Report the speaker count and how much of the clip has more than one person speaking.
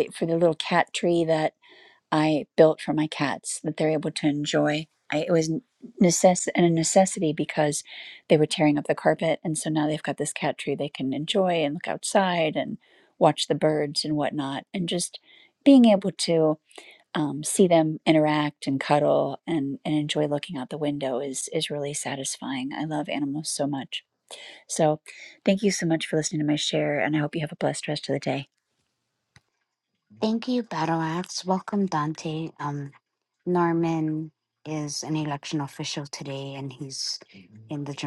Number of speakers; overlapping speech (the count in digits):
2, no overlap